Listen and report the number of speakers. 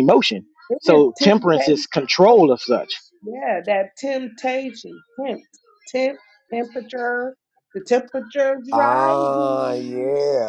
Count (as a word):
three